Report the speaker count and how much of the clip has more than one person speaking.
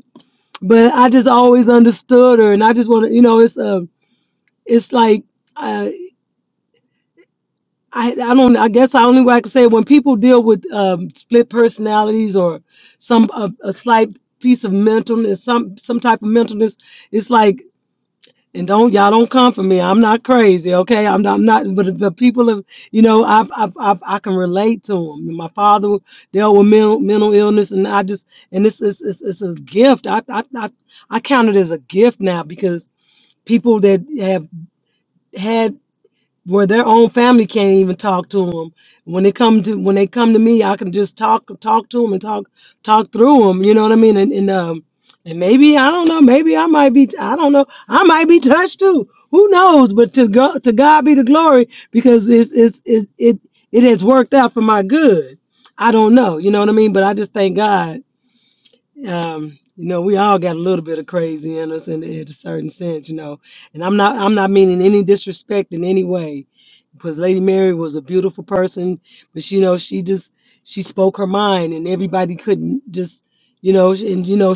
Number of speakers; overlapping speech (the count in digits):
1, no overlap